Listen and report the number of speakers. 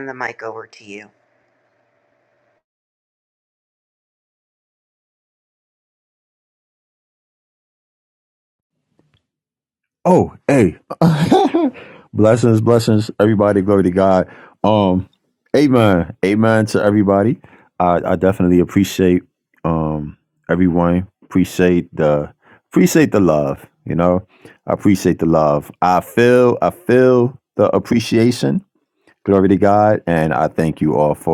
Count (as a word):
two